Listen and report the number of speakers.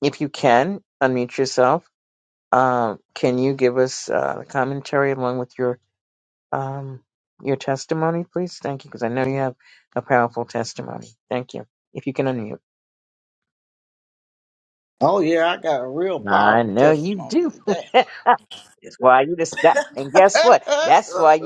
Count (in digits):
2